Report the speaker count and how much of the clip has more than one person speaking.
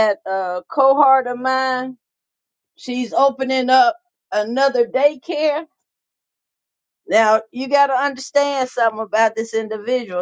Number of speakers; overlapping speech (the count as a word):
one, no overlap